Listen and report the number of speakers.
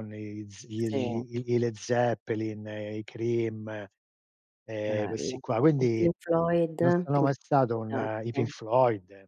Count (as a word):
two